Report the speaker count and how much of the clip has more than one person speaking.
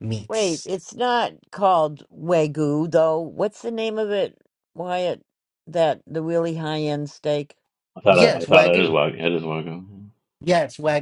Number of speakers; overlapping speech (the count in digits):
3, about 9%